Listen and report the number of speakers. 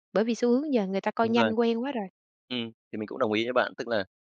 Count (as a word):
two